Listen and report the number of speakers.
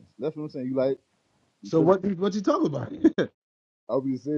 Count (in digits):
2